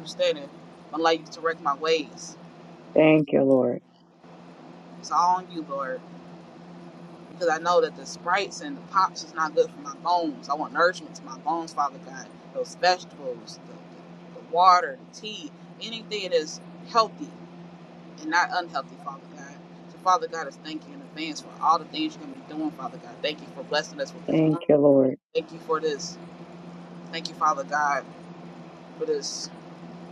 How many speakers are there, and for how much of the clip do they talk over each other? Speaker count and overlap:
two, about 1%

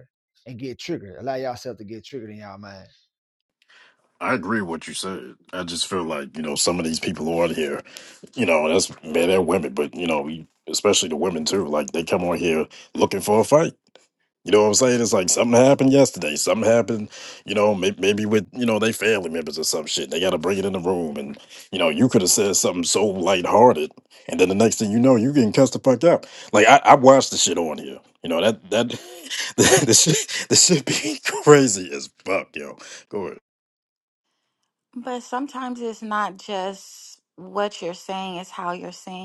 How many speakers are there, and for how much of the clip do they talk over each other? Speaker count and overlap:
three, no overlap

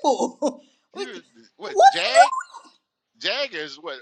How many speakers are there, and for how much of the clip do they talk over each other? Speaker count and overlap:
two, about 20%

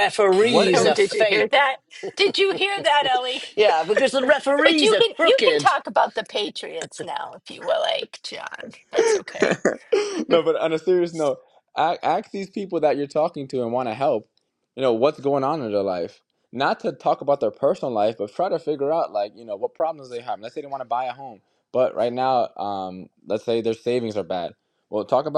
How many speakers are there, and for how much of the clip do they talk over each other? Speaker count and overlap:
three, about 8%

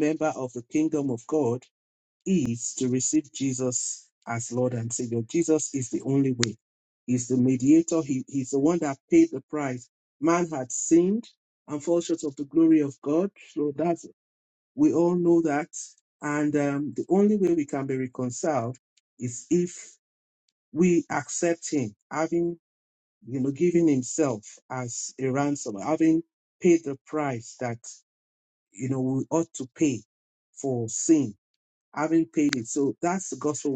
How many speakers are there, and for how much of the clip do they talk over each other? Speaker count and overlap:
one, no overlap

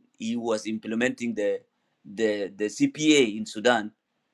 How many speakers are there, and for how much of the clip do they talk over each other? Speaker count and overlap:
one, no overlap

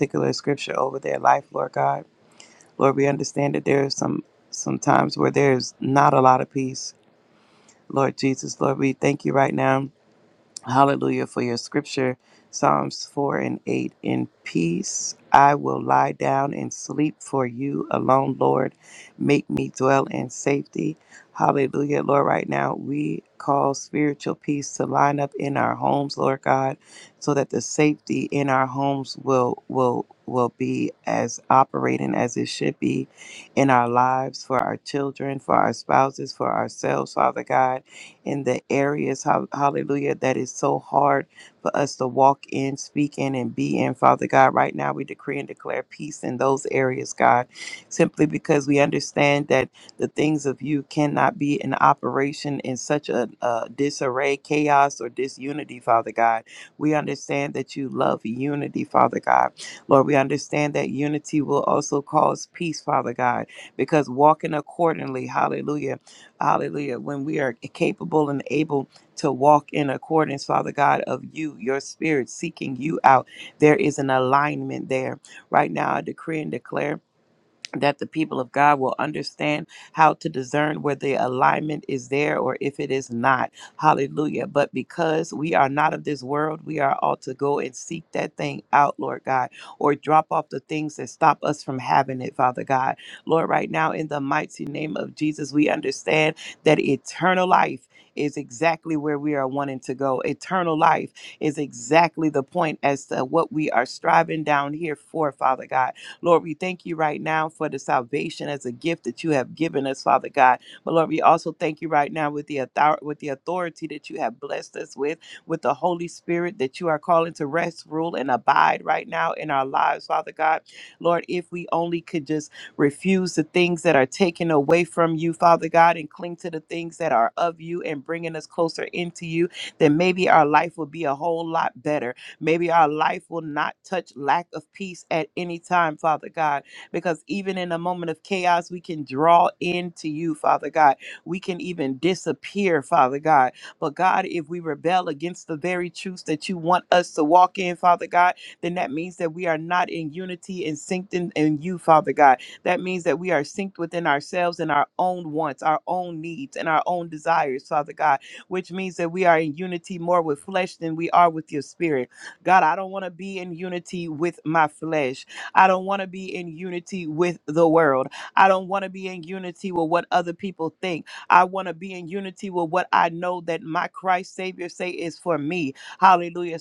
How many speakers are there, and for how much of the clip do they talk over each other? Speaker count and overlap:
one, no overlap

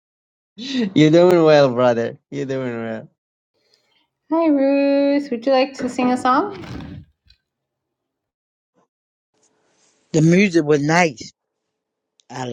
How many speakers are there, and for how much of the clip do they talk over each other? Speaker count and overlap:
three, no overlap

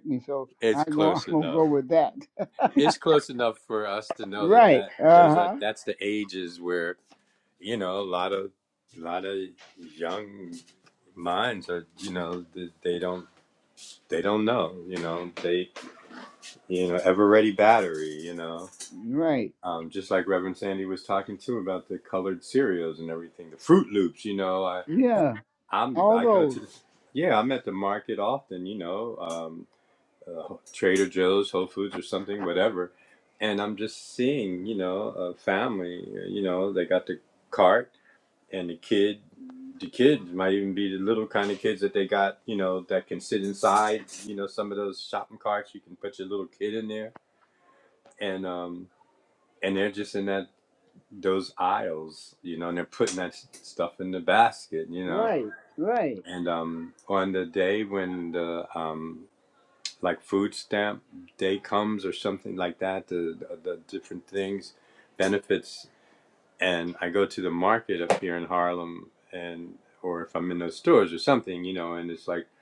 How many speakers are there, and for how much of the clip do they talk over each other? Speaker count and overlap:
two, about 4%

